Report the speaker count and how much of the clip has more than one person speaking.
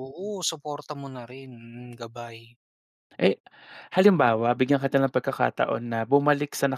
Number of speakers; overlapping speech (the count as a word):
two, no overlap